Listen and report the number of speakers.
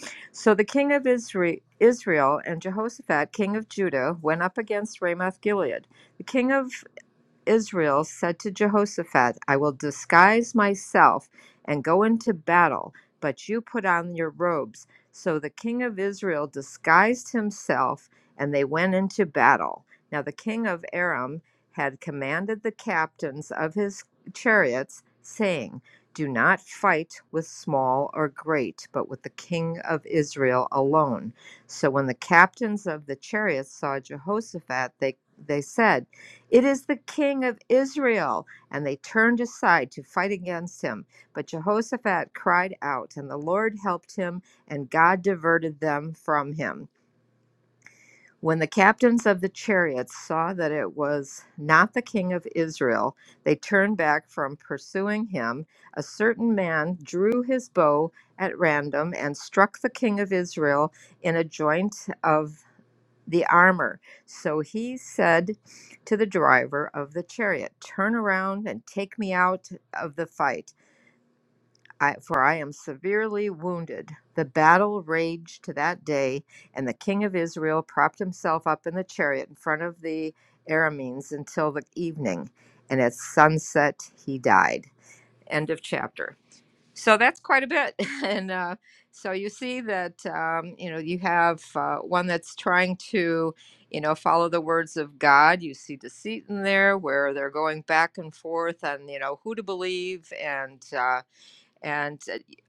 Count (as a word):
one